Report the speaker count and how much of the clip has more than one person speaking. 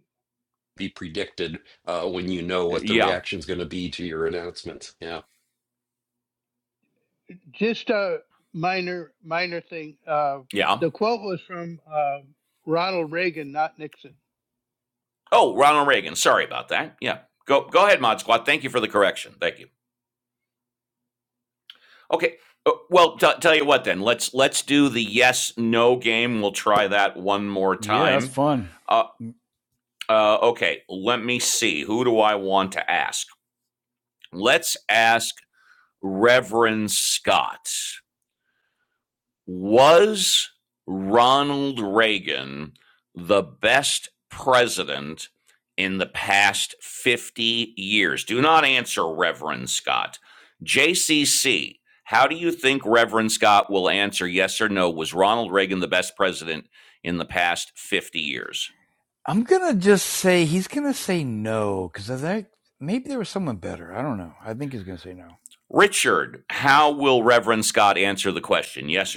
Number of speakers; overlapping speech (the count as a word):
four, about 1%